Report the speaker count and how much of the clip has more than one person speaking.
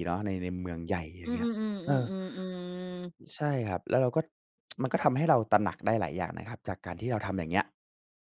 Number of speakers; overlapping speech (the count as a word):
two, about 5%